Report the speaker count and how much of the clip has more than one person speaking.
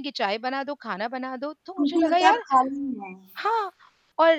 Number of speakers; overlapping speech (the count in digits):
2, about 15%